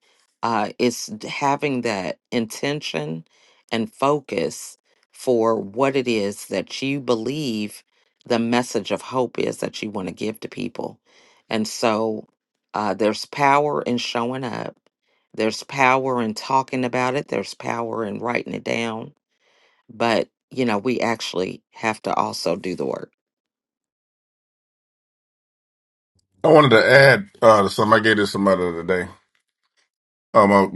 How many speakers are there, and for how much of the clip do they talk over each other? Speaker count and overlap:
two, no overlap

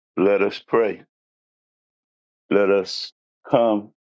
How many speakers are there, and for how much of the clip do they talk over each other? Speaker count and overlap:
one, no overlap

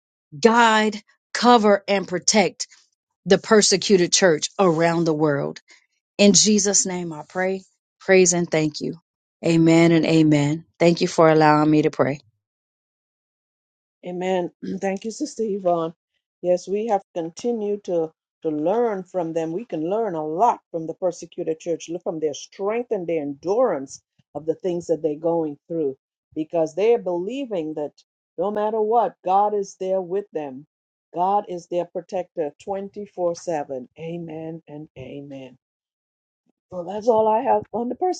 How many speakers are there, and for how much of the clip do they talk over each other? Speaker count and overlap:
two, no overlap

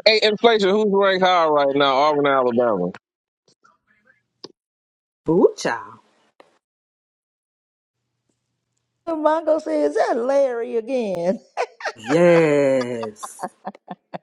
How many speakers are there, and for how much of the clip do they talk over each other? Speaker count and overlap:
three, no overlap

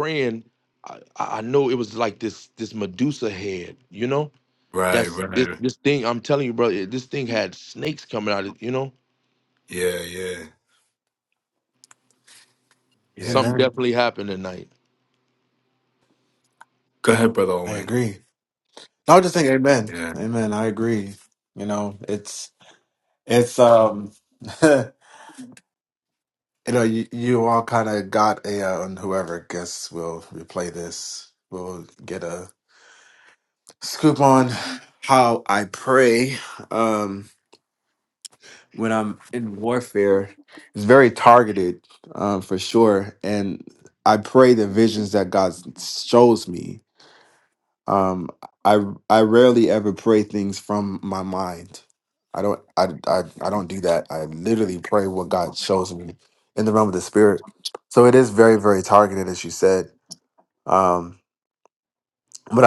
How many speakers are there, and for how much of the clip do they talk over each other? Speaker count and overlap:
three, about 2%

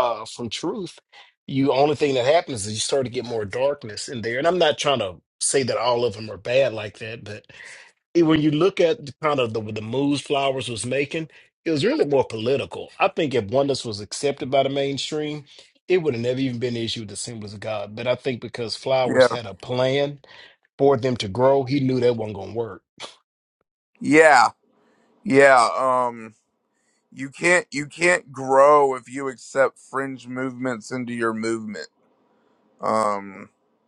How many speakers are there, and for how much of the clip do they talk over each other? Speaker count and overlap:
two, about 1%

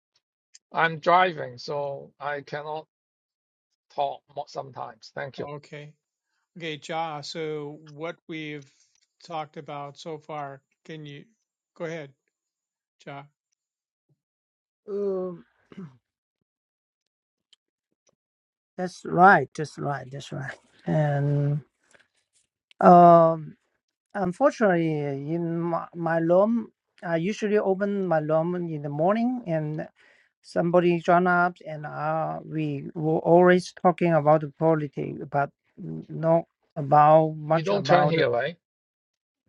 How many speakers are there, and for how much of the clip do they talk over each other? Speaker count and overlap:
three, about 2%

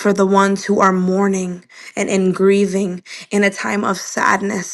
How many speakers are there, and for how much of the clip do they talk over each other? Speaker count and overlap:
one, no overlap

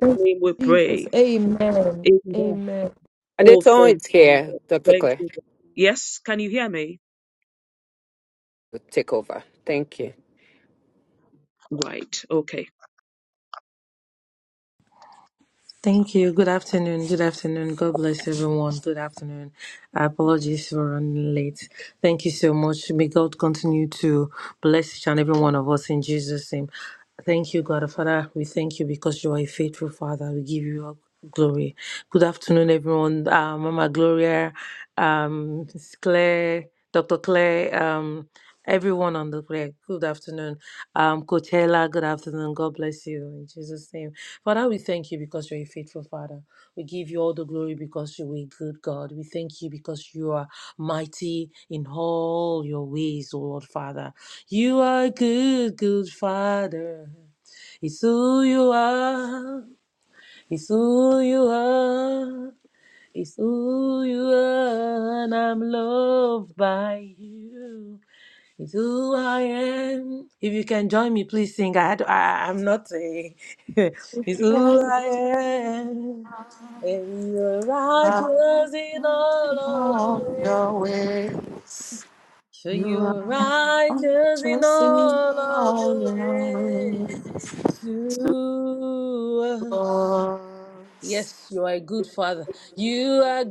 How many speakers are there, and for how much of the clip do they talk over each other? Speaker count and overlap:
five, about 9%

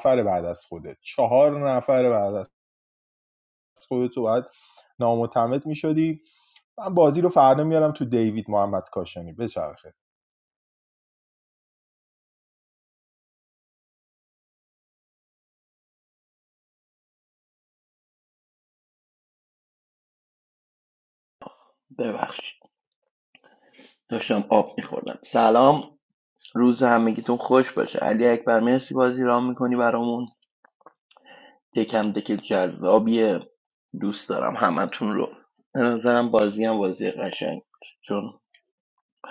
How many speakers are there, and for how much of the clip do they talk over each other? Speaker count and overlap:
two, no overlap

